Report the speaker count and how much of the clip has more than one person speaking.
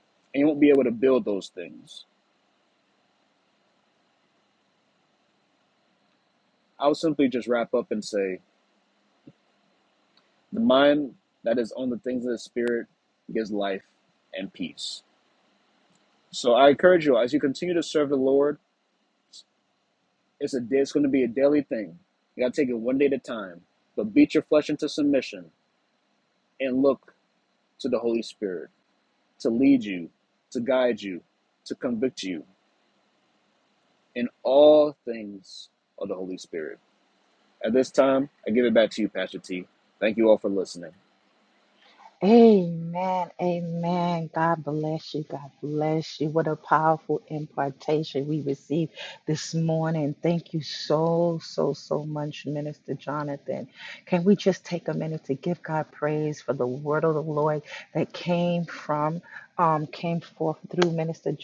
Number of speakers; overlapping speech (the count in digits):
2, no overlap